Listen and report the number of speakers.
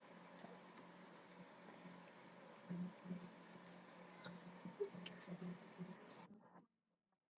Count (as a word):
zero